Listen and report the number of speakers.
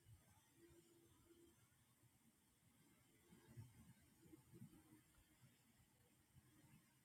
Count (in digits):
0